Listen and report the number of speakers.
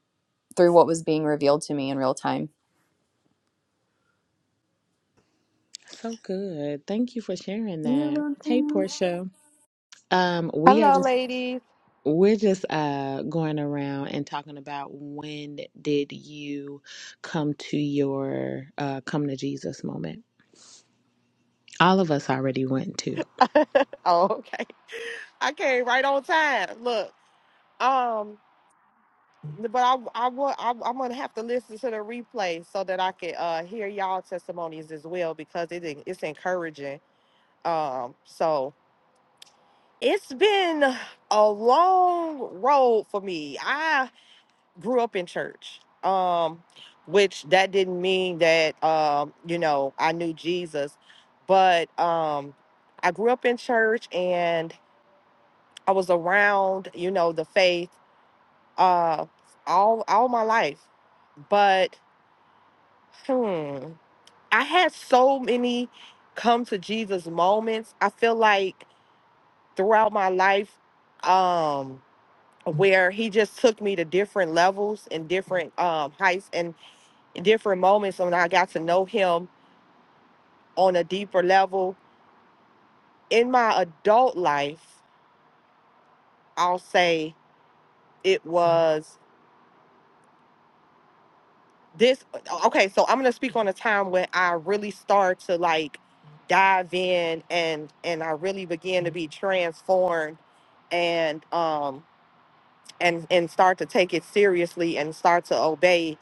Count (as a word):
three